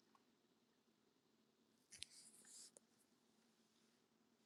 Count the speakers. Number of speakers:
0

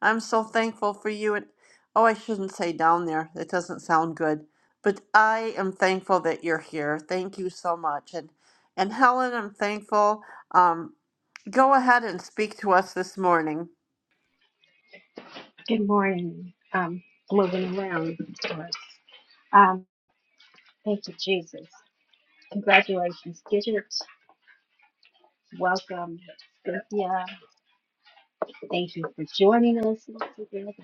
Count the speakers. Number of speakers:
2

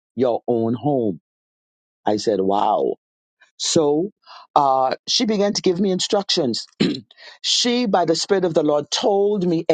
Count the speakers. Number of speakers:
1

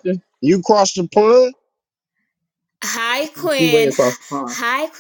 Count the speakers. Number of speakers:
3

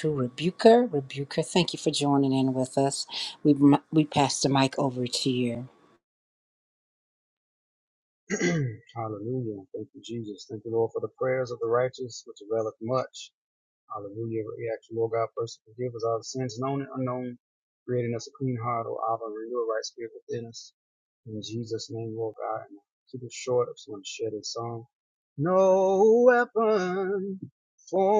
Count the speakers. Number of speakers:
2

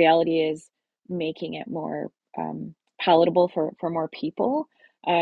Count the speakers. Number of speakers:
1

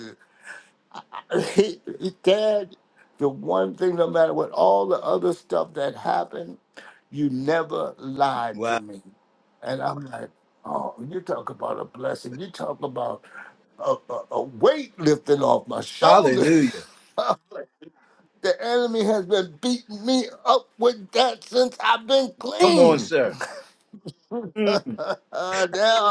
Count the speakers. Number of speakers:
2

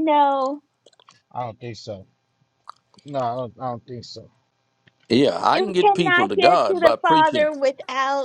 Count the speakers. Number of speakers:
3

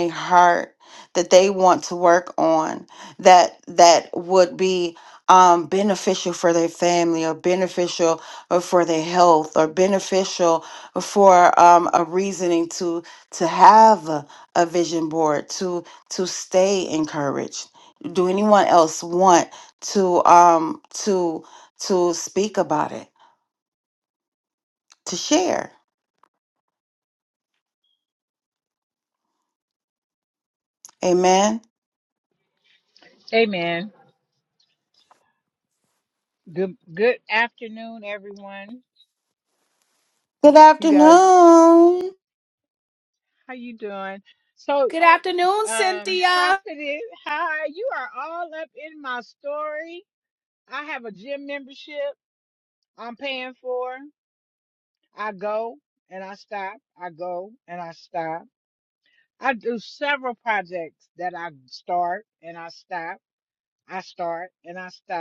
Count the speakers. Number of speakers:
3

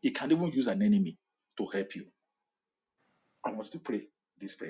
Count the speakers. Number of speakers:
1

